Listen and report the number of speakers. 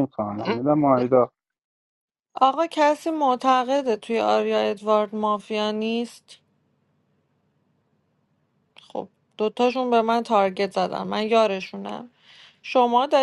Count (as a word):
two